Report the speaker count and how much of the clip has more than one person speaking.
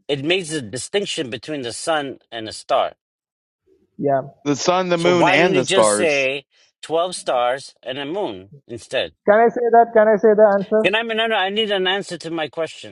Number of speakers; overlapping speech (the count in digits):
3, about 9%